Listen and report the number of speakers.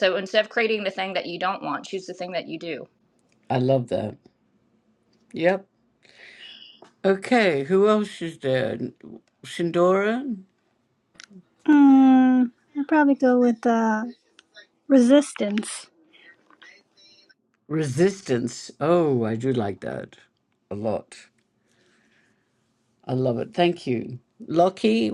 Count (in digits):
3